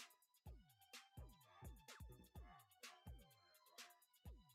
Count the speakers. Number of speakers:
zero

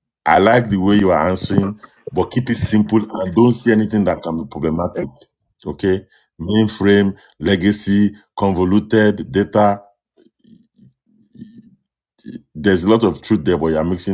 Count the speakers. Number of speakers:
one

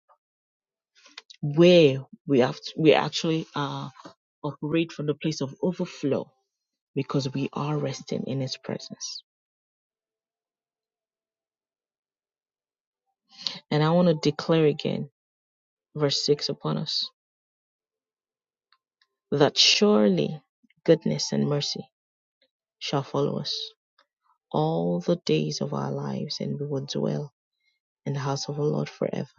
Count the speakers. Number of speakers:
one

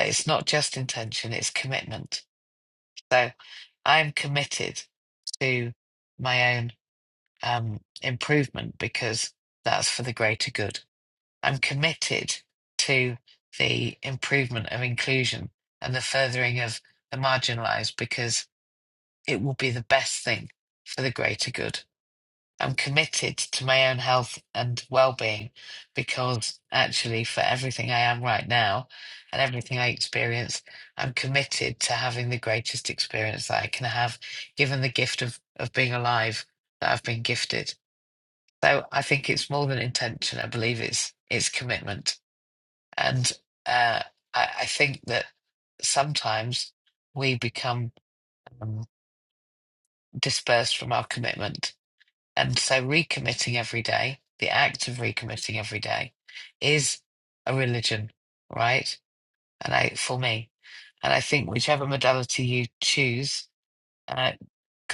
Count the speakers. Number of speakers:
one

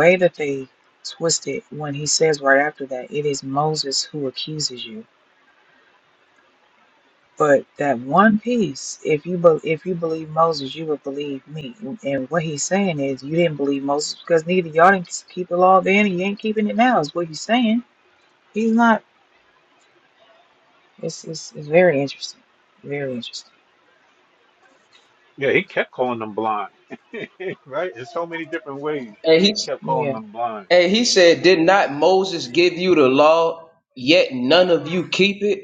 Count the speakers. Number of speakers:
three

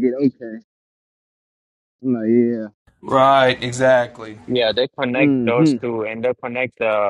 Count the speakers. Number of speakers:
three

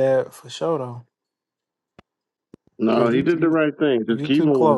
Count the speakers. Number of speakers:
two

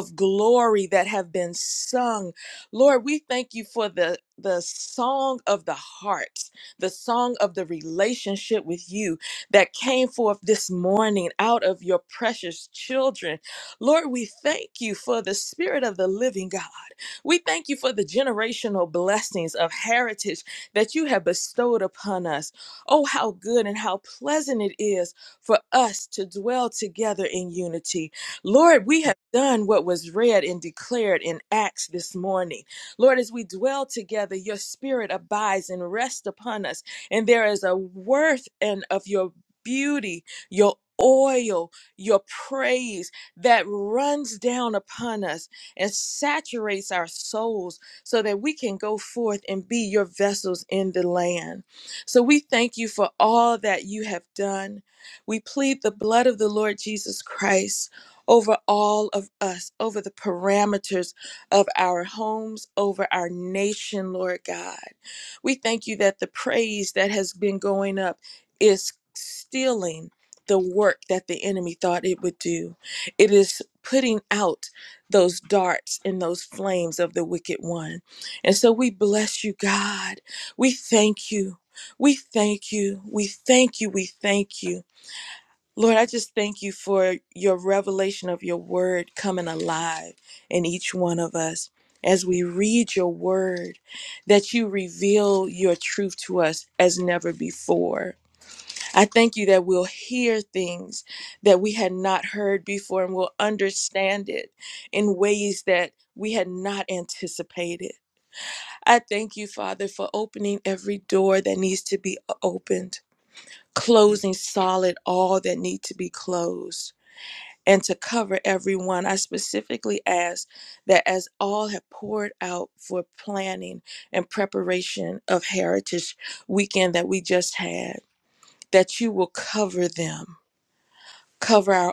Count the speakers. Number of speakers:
one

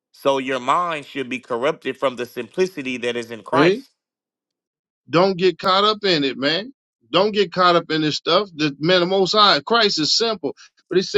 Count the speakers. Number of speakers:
two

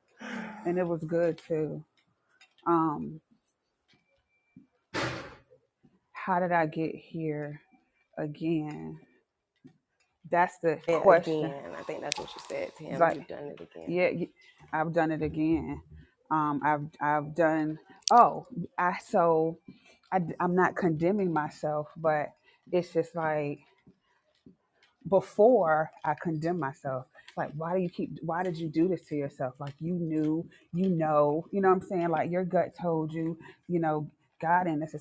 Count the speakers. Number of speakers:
two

